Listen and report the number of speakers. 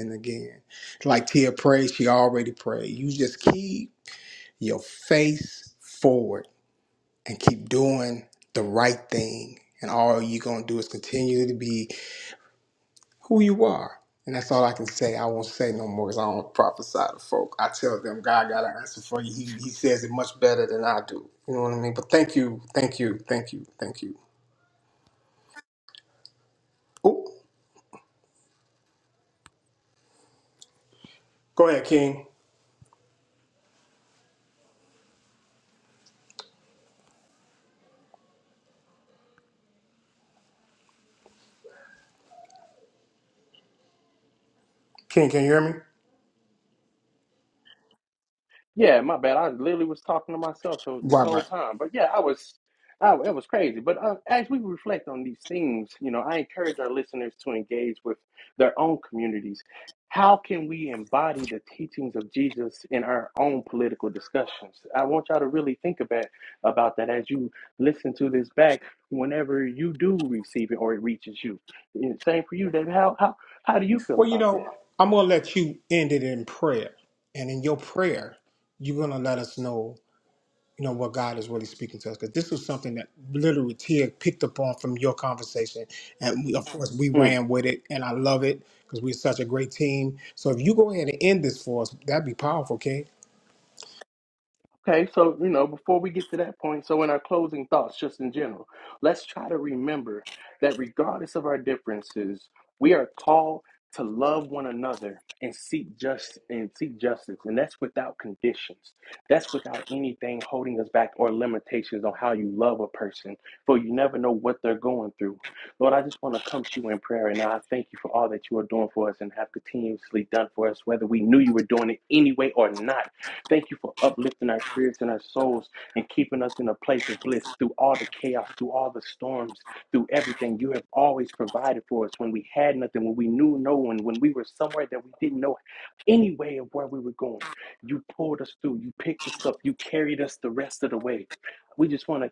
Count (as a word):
two